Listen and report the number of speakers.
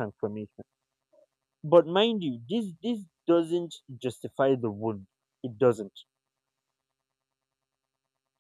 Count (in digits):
1